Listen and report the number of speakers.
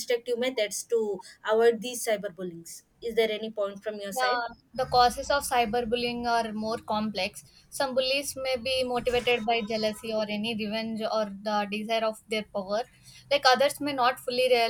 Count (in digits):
2